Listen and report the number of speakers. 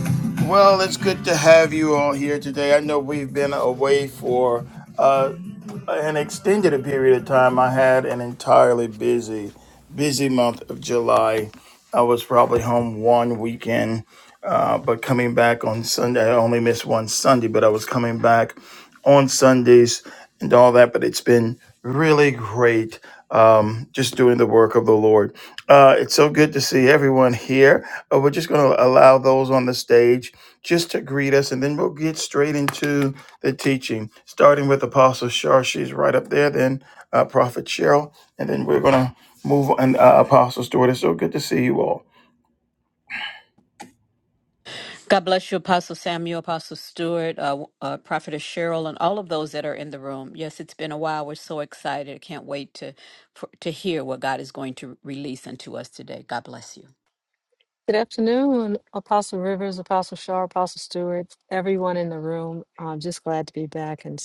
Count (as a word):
three